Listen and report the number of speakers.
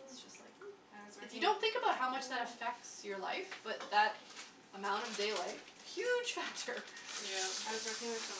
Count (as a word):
three